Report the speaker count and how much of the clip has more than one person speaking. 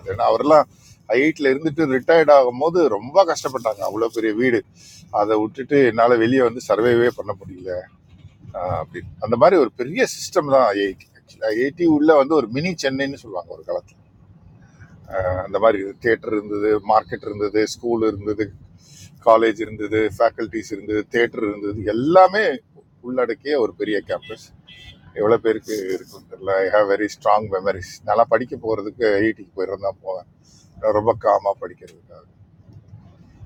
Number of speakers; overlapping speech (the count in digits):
1, no overlap